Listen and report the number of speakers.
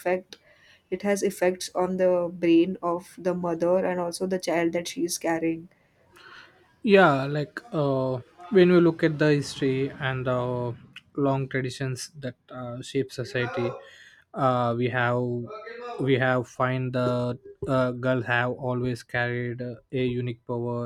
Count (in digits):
2